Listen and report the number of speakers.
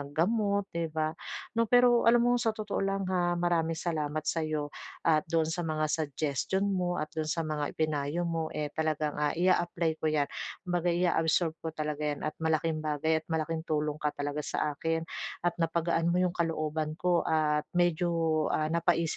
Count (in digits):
1